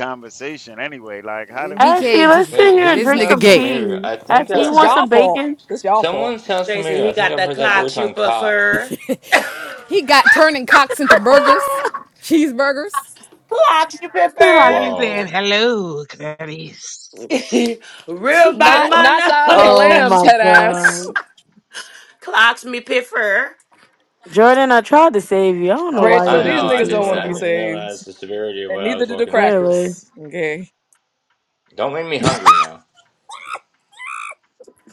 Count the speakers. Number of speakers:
7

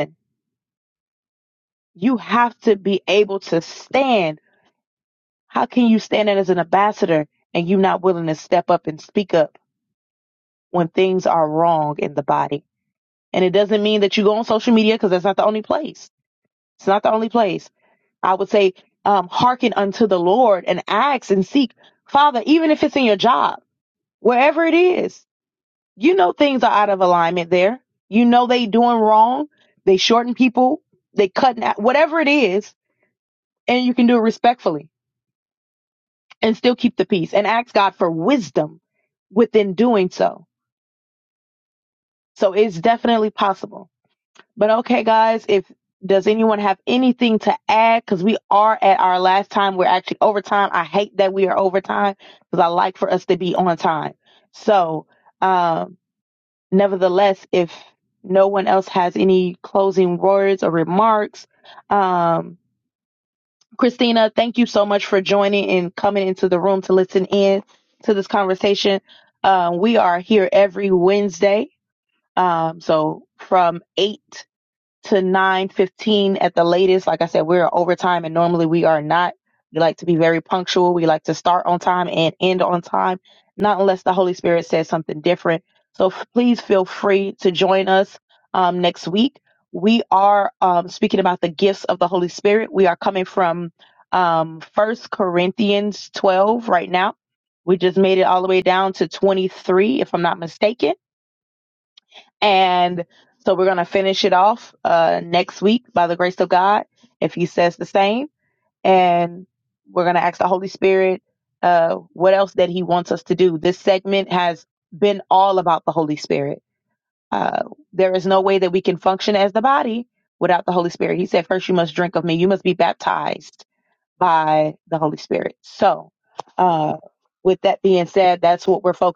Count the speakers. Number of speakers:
1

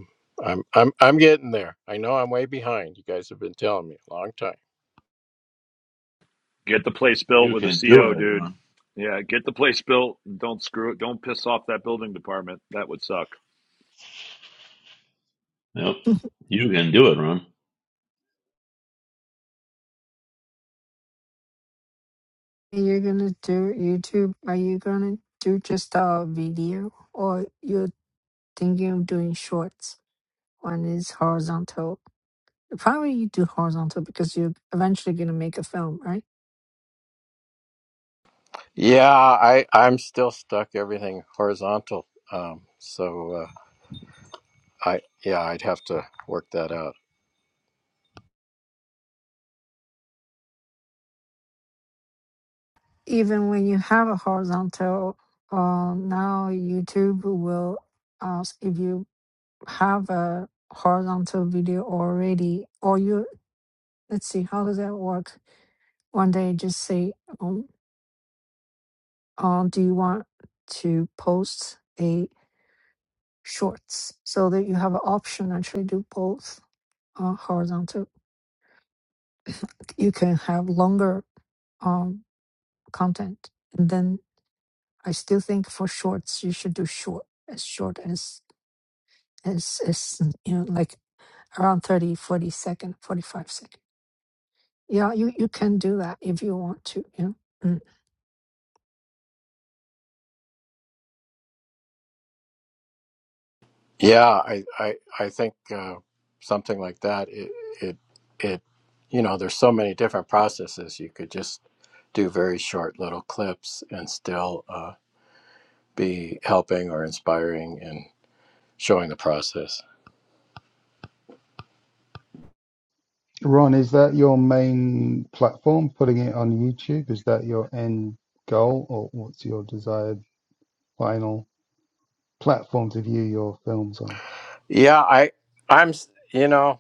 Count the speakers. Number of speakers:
5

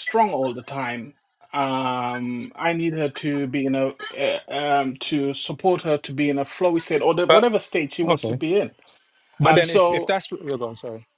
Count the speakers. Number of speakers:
2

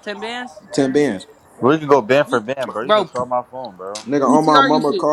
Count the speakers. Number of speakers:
3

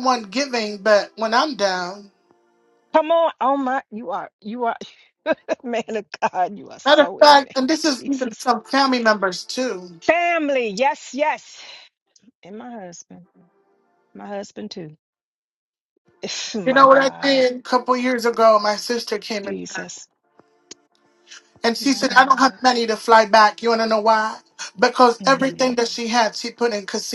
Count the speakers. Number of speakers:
2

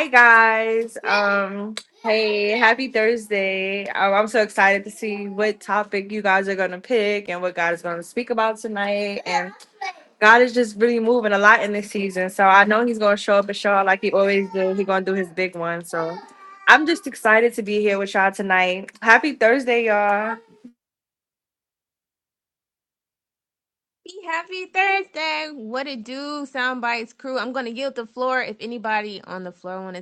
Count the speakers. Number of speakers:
2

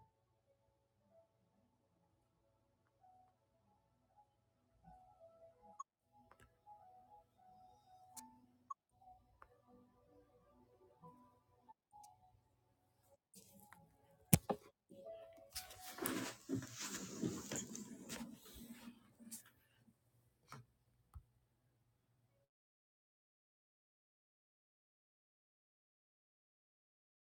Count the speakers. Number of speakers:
0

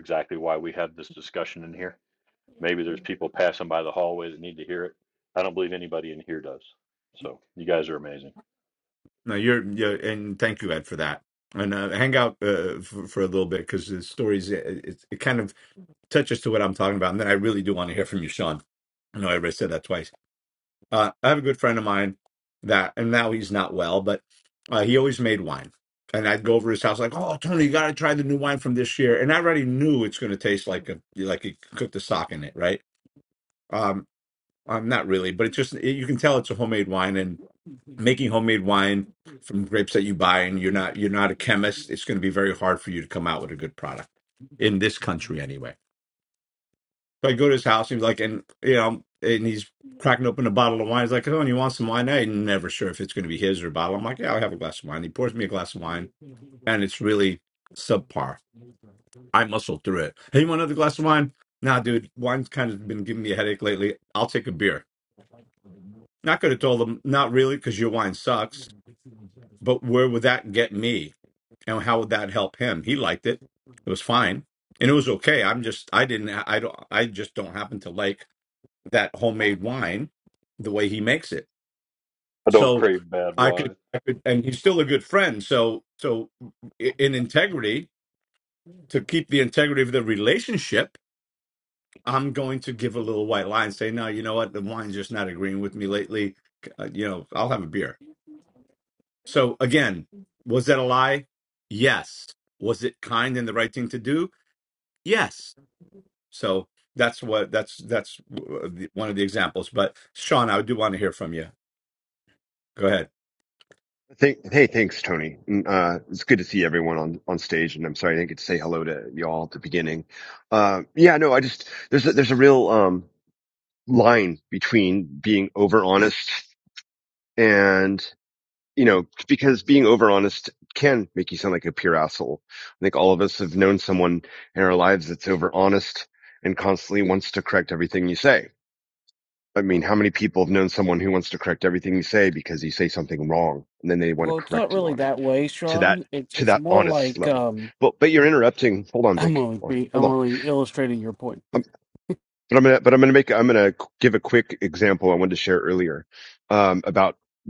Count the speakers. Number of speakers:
4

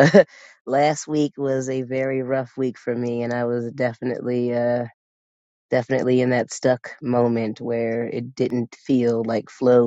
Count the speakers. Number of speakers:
1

